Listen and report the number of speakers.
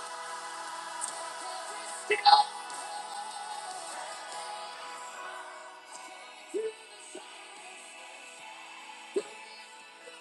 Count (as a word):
zero